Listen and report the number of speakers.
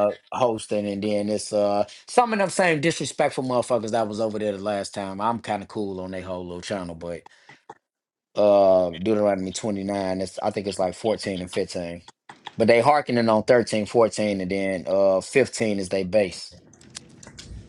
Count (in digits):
1